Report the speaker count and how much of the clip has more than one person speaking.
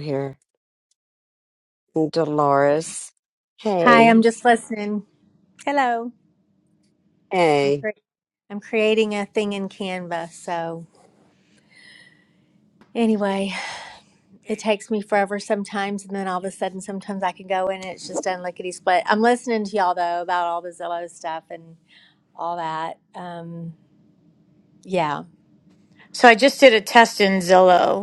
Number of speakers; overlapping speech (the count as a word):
three, about 2%